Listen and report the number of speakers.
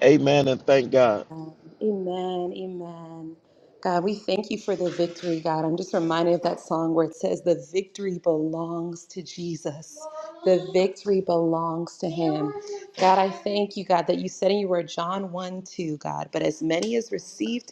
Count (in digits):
2